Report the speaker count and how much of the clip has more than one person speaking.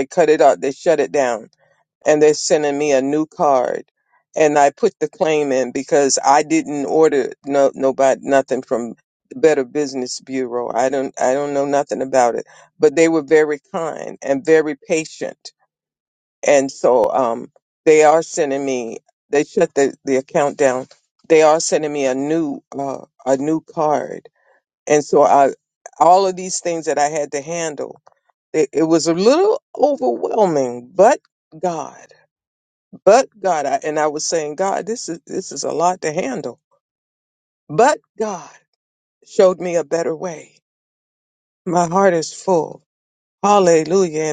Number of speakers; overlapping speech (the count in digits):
1, no overlap